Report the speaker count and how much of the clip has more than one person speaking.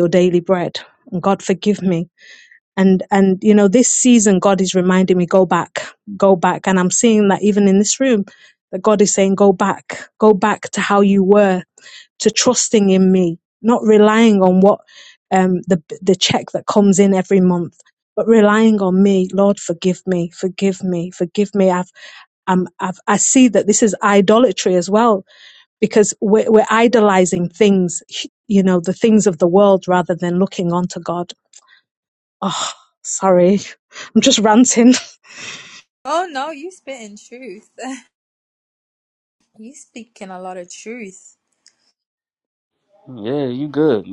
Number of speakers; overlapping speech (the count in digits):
3, no overlap